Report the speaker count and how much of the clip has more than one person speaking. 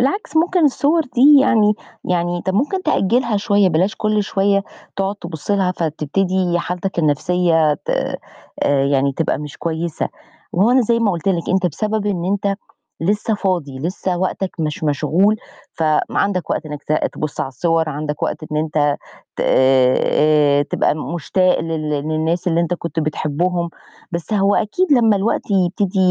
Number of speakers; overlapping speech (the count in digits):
1, no overlap